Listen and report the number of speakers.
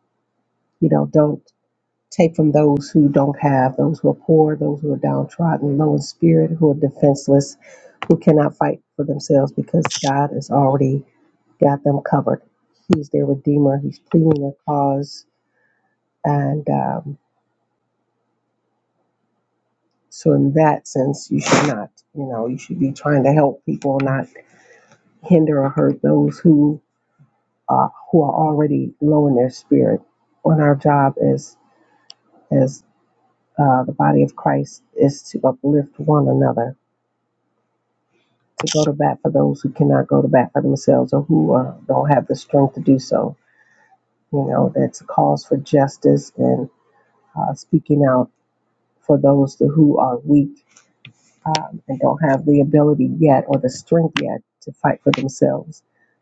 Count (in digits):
1